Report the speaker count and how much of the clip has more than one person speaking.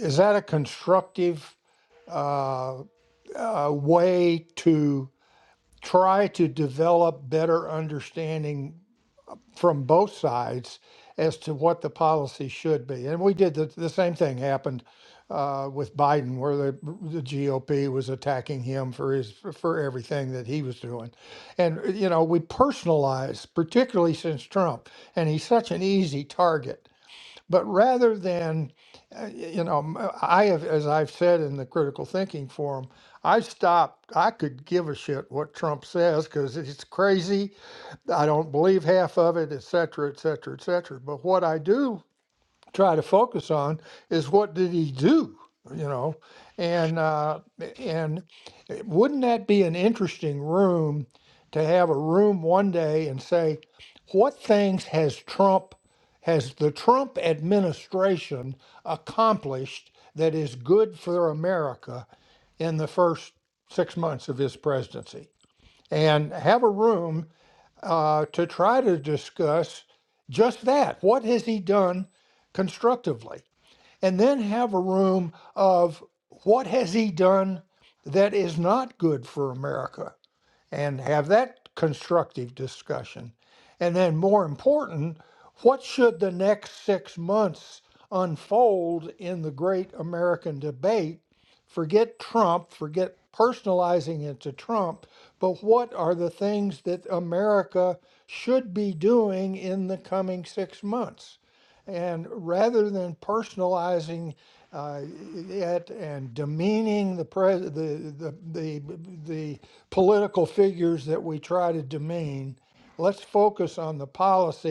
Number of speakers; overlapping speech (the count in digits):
1, no overlap